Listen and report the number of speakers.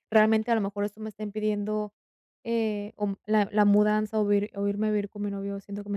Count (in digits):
1